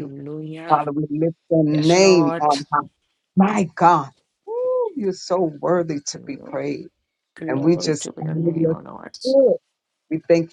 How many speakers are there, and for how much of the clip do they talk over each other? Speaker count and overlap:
2, about 24%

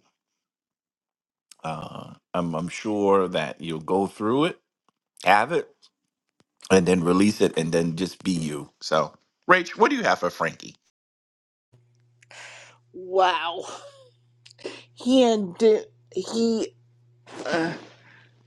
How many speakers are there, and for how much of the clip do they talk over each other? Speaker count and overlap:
2, no overlap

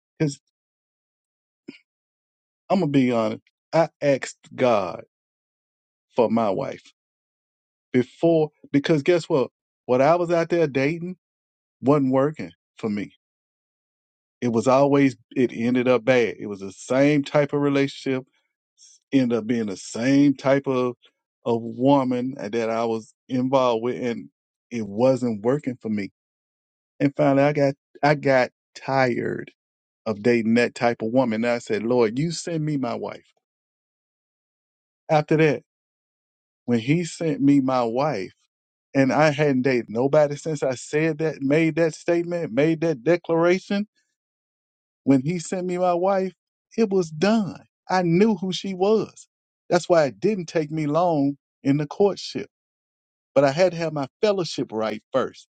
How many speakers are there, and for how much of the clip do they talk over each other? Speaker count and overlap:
1, no overlap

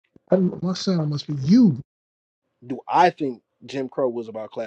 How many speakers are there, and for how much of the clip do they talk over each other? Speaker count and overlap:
2, no overlap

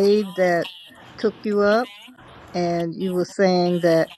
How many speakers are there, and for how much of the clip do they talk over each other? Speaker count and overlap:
1, no overlap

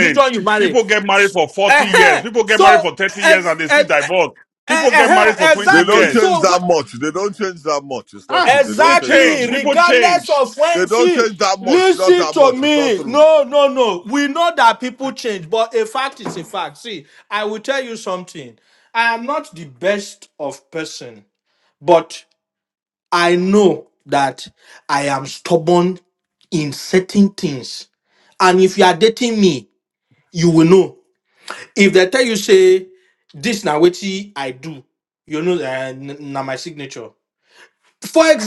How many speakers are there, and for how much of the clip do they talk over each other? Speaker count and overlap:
3, about 22%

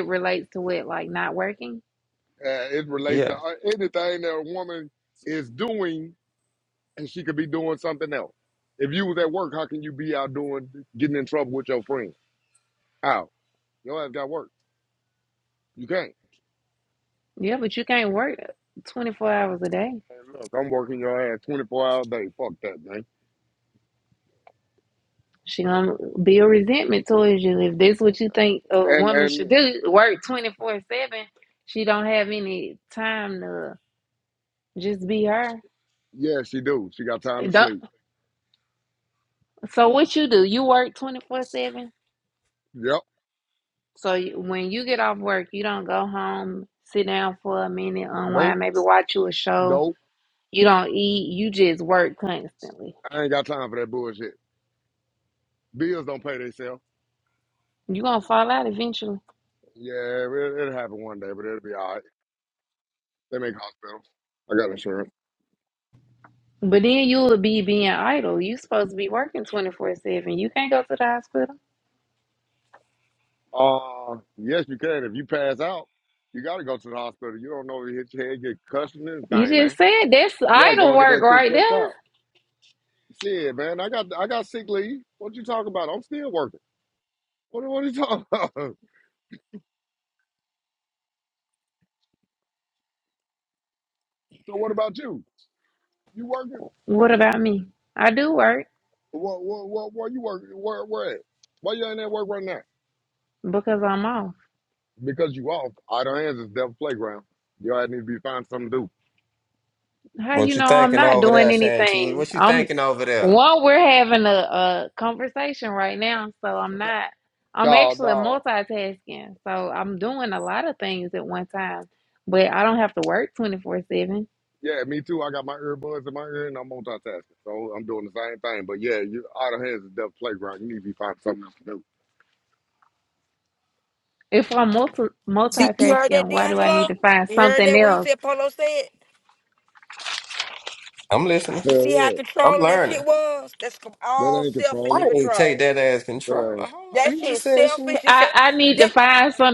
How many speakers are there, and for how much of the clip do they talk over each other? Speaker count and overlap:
4, about 9%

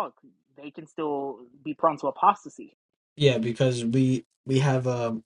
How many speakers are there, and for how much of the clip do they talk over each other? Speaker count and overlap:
2, no overlap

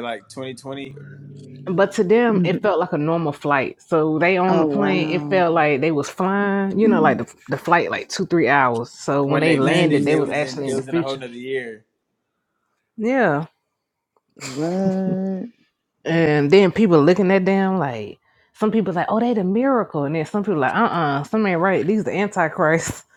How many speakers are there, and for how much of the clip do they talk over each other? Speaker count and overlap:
3, about 14%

